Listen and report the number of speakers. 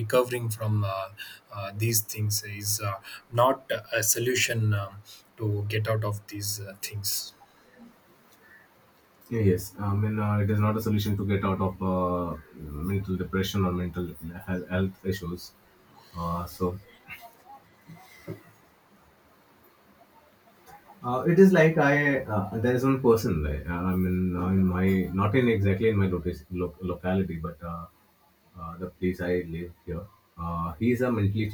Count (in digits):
2